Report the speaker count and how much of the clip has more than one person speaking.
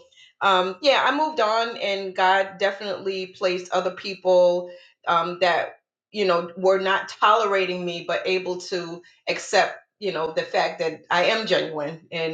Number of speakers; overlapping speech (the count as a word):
one, no overlap